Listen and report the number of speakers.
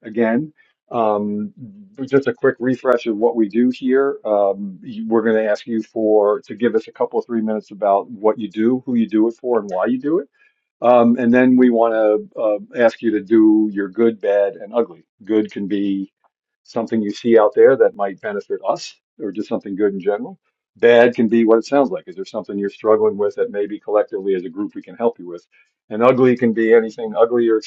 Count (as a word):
one